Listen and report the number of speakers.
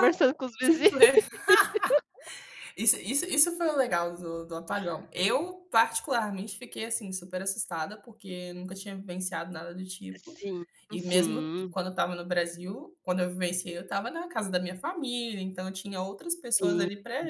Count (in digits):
2